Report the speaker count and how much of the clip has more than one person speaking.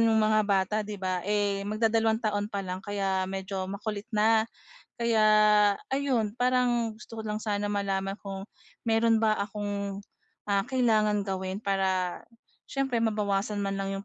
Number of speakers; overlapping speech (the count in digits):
1, no overlap